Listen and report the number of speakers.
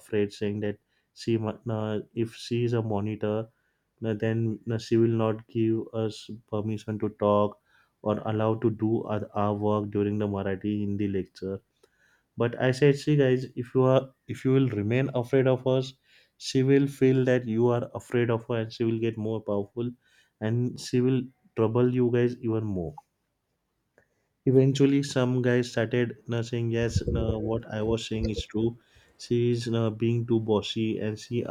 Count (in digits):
1